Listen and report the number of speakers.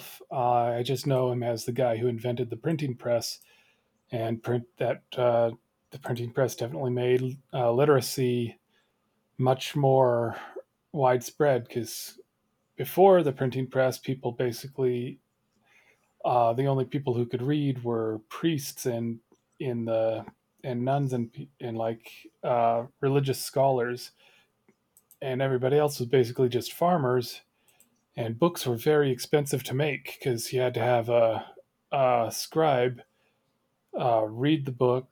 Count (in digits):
1